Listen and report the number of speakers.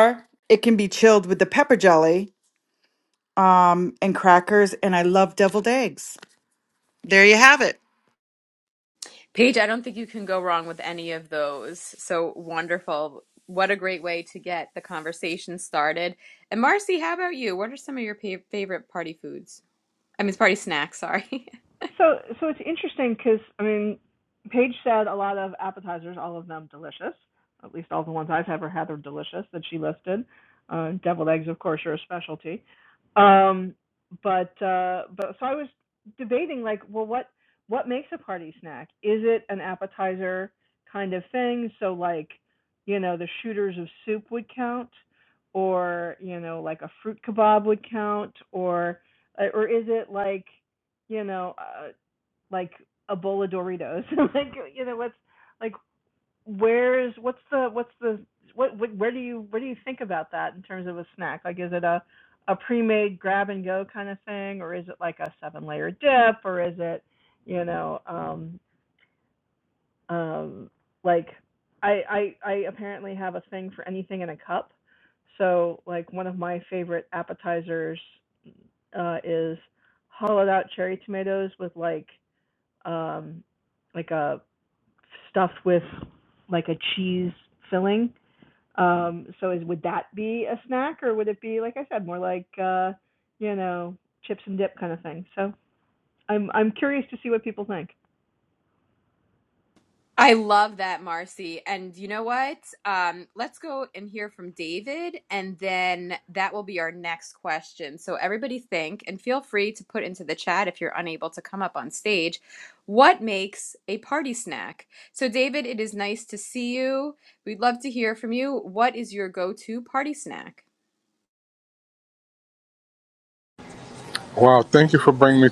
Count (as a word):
four